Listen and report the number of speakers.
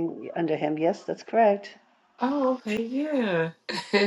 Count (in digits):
2